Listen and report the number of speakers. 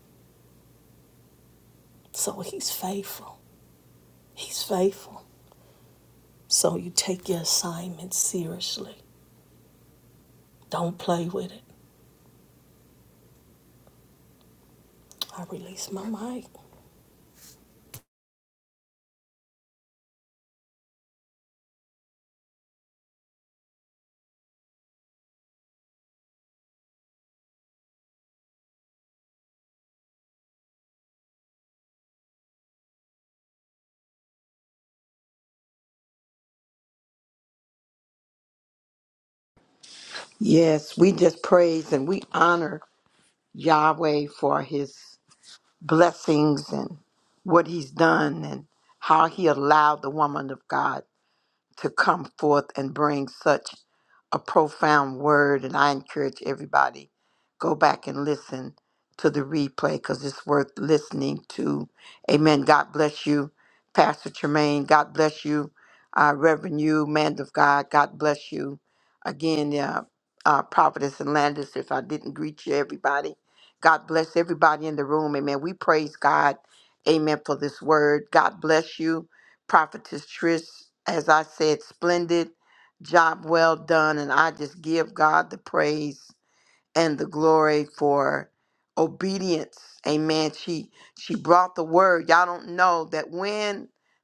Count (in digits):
2